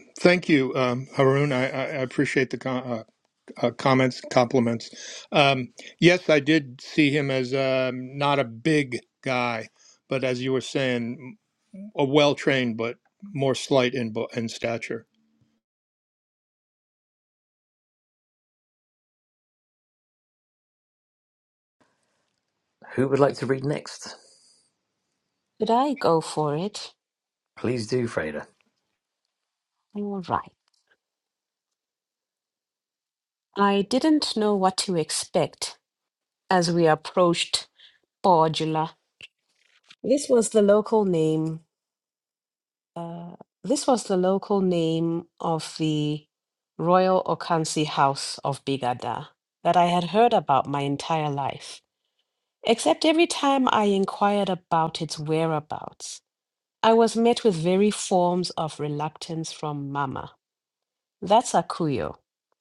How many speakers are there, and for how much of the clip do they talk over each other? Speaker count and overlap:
three, no overlap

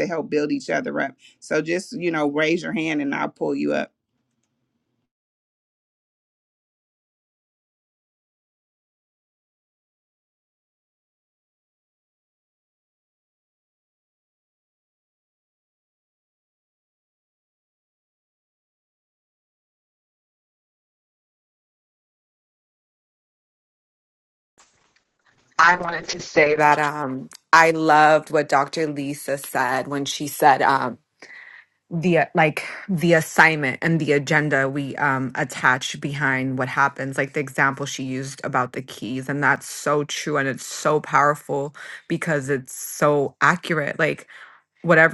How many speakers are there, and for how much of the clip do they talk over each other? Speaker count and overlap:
two, no overlap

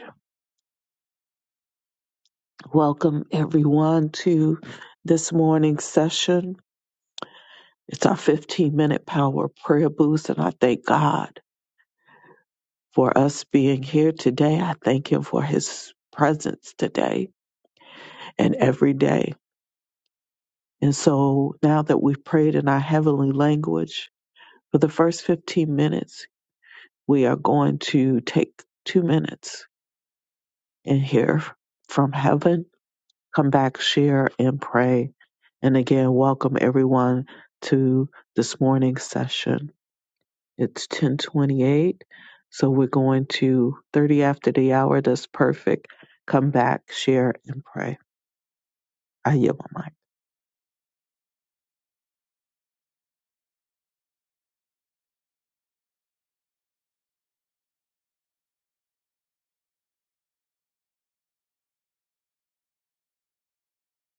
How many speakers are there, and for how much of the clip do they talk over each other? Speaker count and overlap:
one, no overlap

